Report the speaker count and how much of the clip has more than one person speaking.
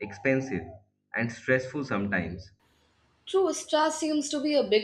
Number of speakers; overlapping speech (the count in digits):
2, no overlap